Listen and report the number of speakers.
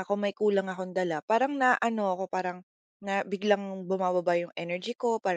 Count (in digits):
1